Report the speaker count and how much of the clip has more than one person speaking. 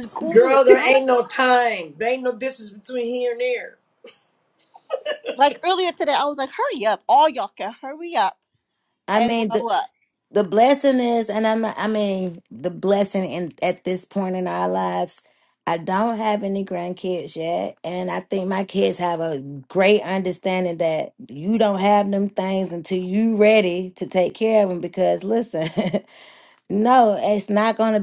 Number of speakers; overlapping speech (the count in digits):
3, about 3%